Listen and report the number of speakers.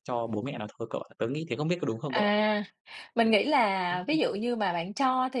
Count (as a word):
two